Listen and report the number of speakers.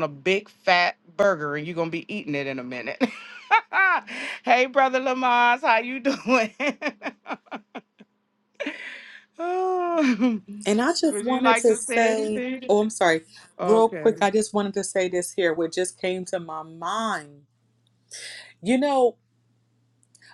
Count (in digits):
2